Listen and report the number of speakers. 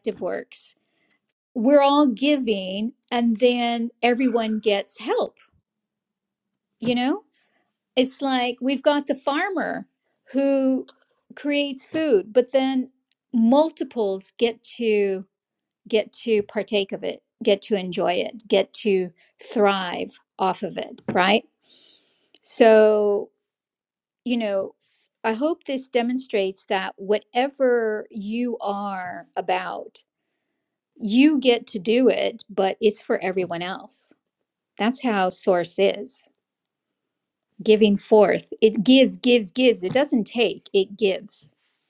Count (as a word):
one